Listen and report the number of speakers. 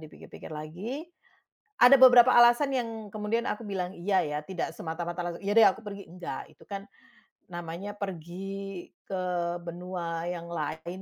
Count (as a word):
one